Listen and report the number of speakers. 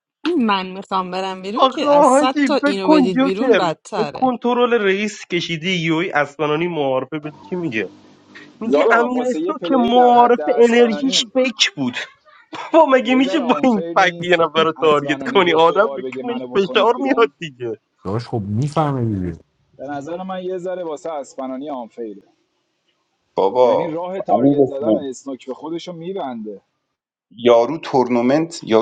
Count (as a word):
five